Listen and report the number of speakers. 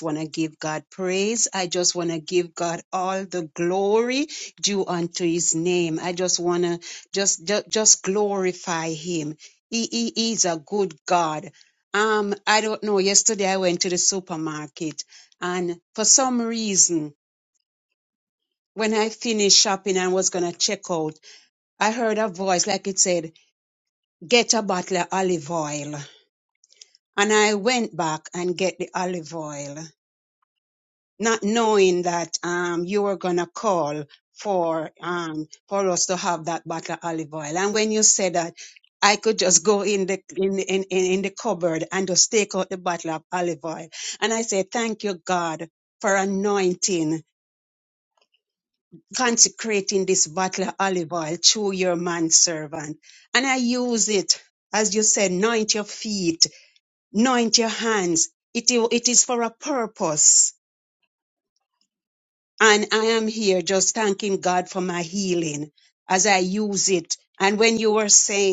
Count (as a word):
one